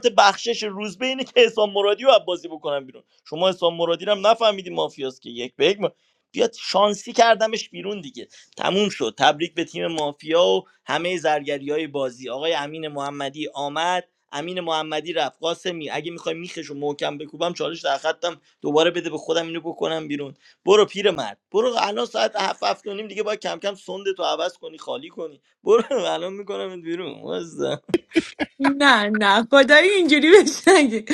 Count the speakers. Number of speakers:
two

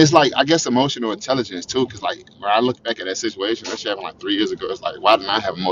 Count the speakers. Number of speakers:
one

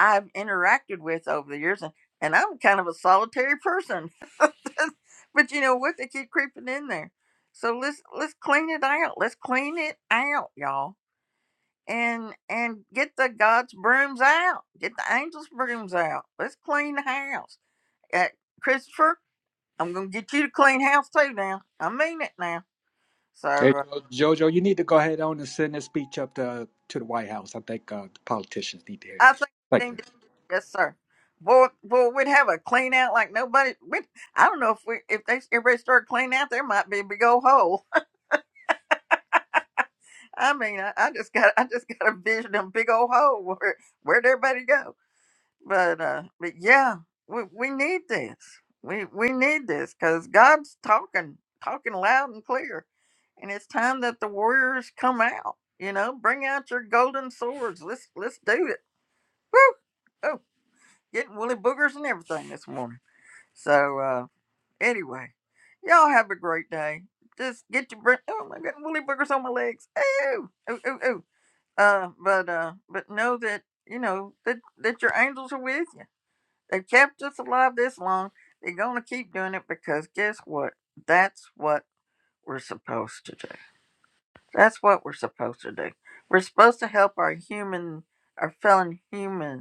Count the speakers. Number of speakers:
two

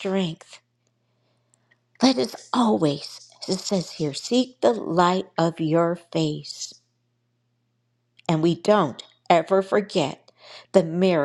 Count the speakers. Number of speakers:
one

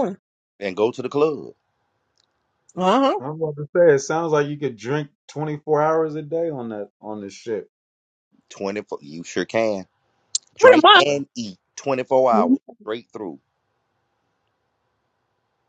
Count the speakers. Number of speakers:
three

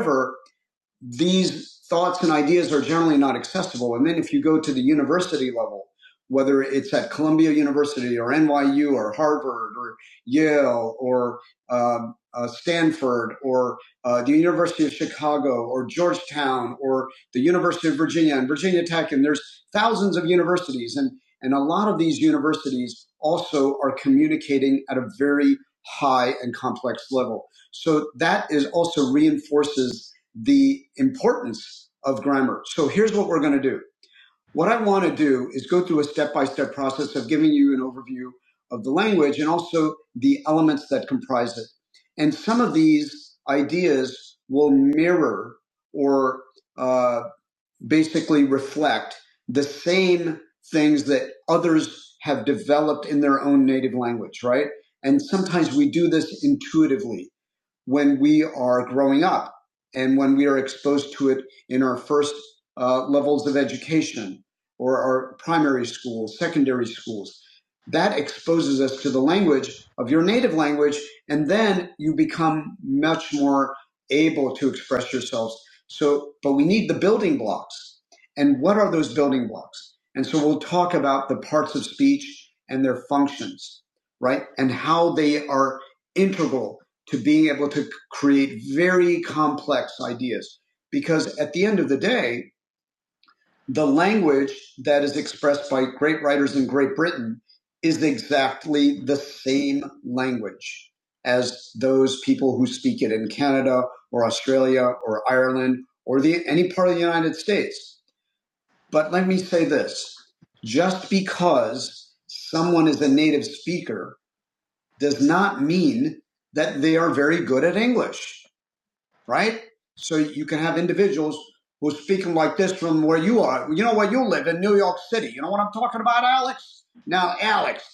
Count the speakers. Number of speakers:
one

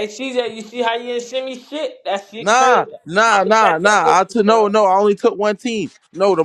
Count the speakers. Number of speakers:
two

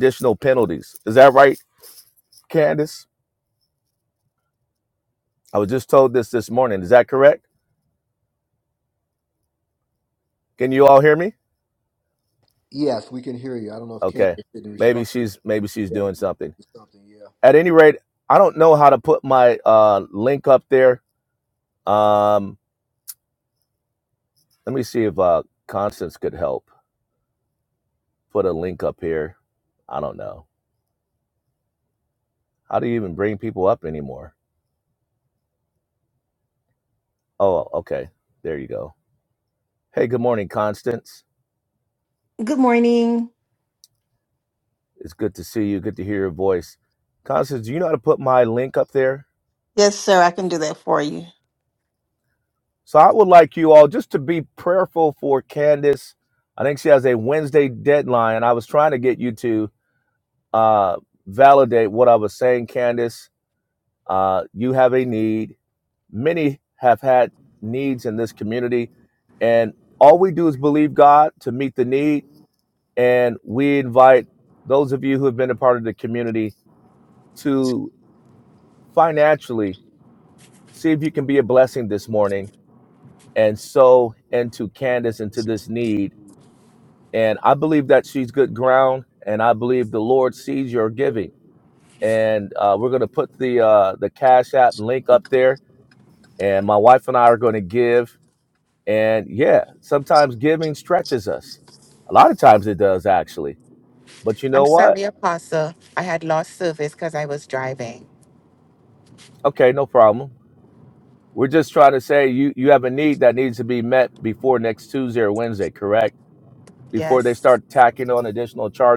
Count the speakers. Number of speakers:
four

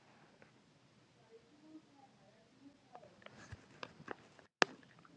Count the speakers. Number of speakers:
zero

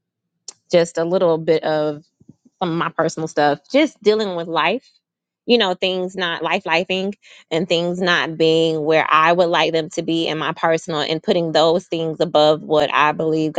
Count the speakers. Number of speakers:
one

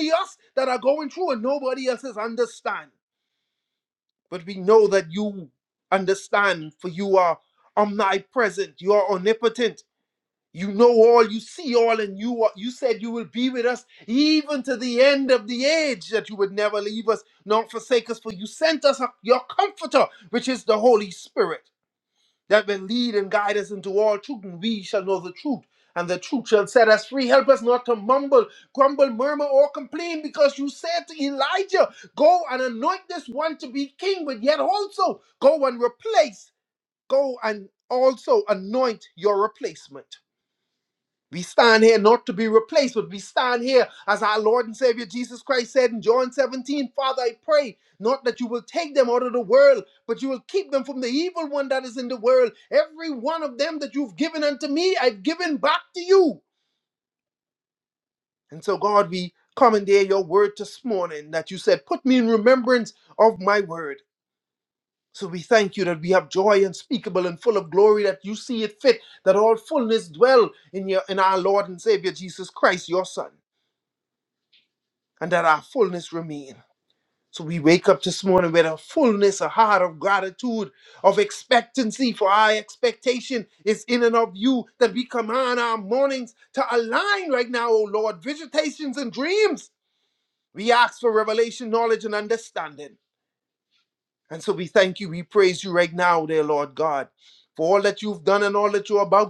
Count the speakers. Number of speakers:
one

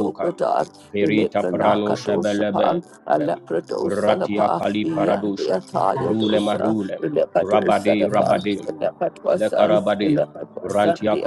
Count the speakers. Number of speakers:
two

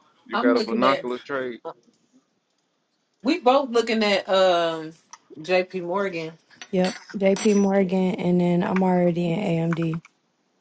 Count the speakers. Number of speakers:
three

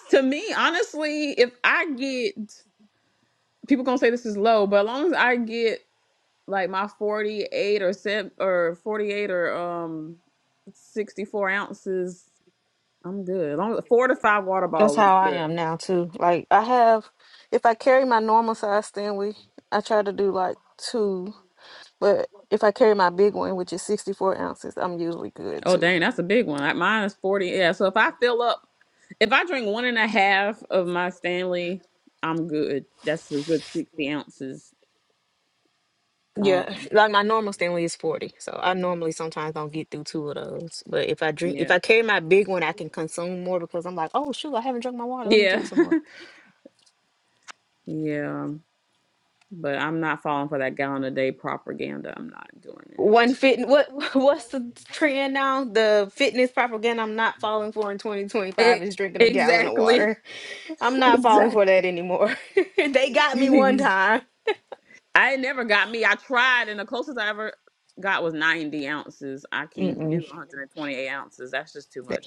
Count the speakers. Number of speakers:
two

